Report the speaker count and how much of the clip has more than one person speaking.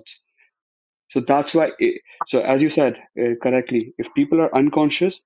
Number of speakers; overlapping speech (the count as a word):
one, no overlap